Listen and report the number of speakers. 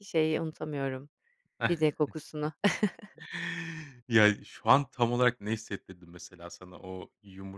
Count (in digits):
2